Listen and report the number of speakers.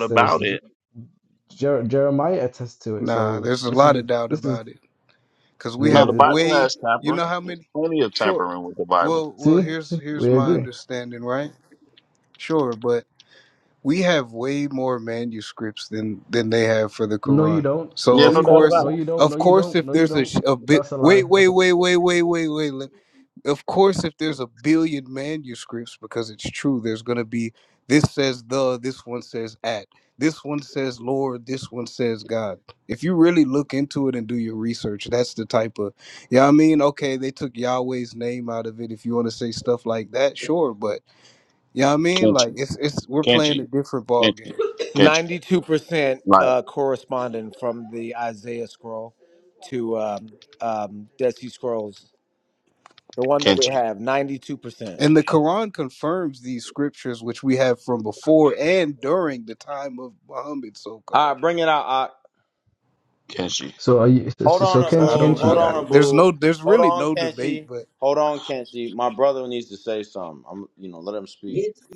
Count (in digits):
5